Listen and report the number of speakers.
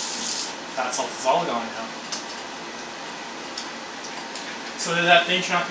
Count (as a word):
one